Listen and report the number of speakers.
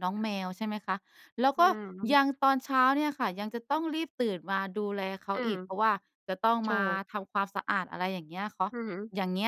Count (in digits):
2